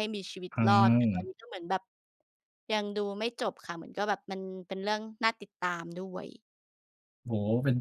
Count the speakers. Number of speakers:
two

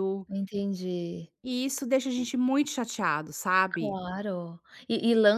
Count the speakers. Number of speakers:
two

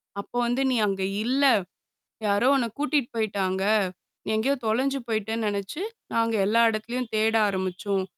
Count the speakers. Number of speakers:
one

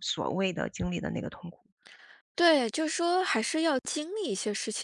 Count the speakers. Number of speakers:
two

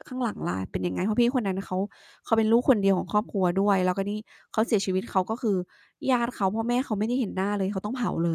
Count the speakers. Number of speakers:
one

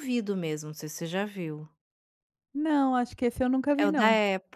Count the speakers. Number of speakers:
two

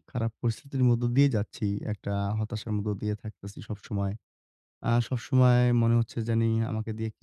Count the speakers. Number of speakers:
one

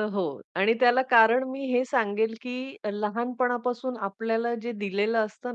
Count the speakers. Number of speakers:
one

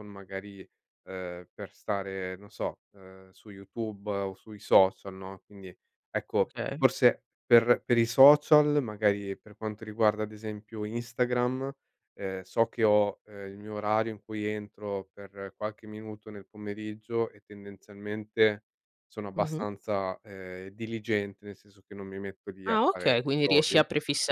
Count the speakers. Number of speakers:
two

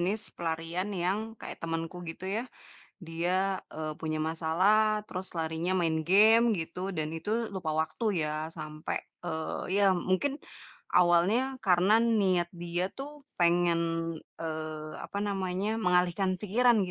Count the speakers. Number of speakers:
one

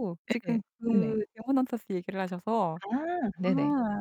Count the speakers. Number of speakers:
two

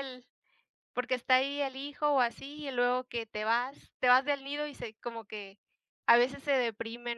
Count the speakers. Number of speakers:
one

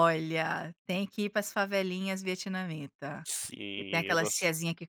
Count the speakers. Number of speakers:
two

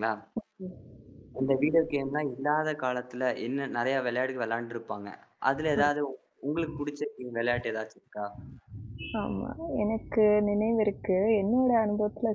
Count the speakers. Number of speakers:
two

